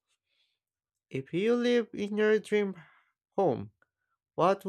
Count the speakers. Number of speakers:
1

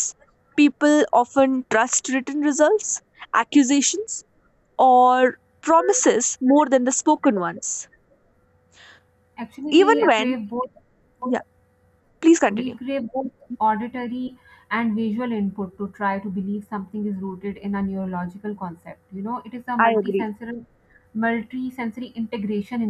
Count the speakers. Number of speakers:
2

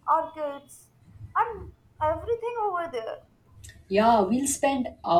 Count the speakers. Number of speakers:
2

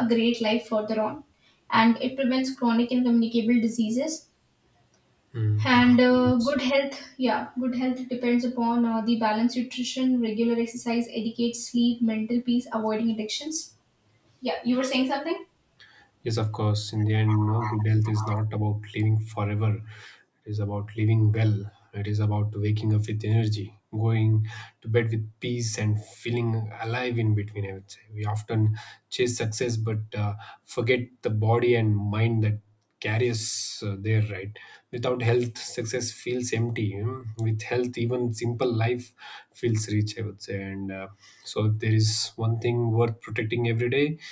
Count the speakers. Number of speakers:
2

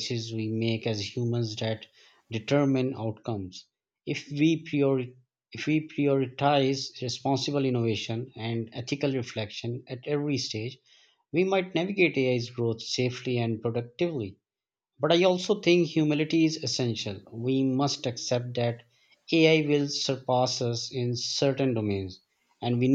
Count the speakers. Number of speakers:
1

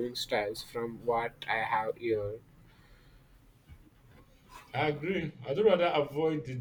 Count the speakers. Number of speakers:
2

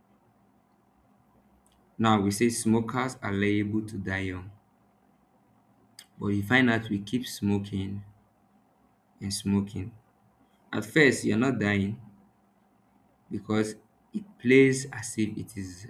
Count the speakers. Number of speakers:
1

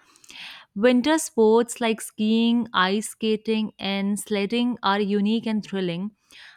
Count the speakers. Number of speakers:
1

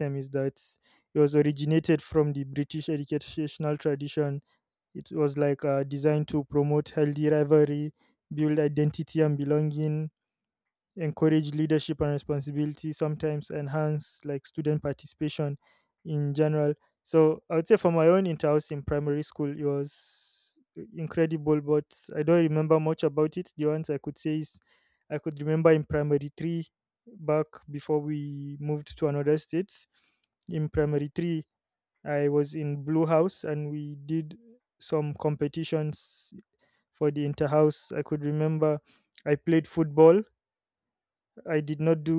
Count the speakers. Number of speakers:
1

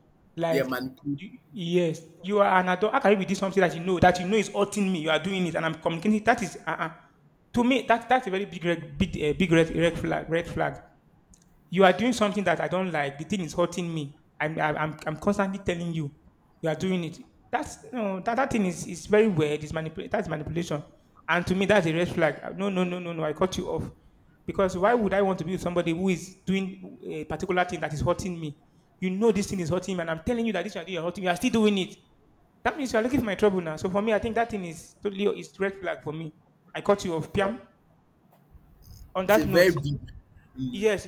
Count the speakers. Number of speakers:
2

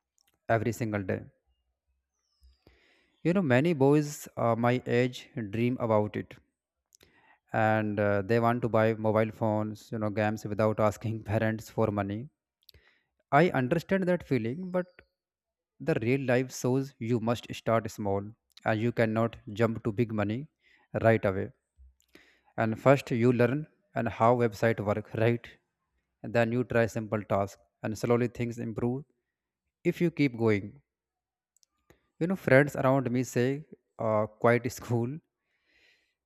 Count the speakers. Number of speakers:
1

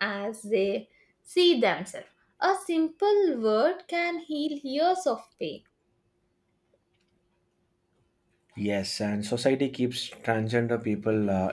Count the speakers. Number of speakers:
2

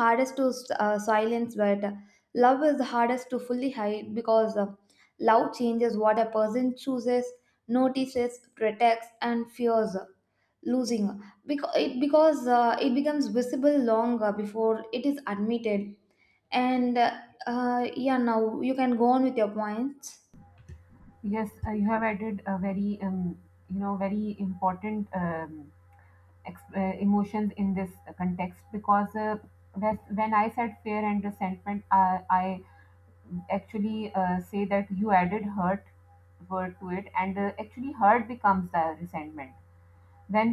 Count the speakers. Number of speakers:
2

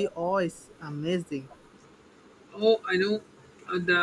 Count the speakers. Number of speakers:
2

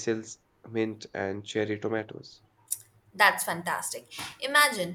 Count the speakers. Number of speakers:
2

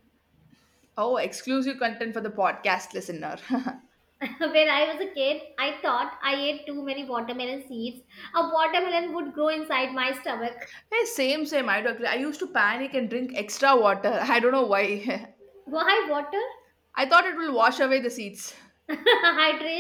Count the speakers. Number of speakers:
2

